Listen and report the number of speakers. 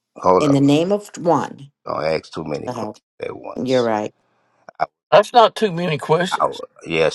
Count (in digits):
3